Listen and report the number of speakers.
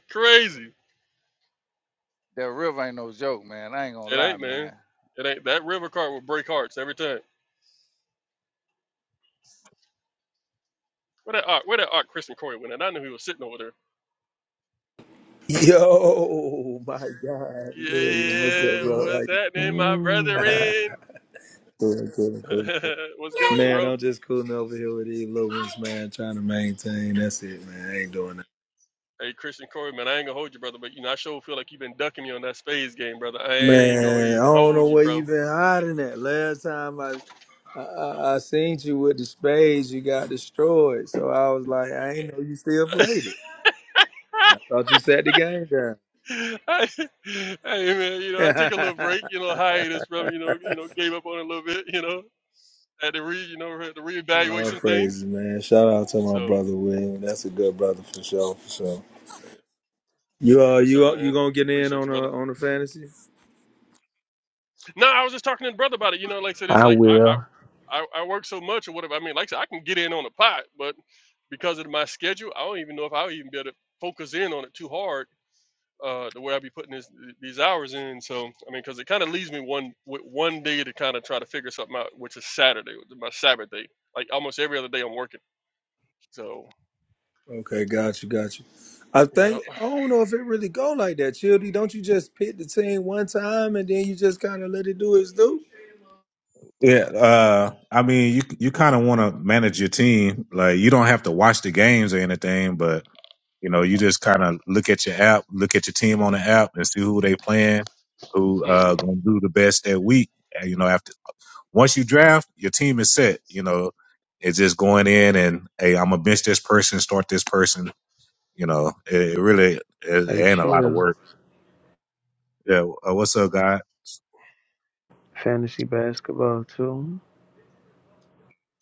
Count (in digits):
5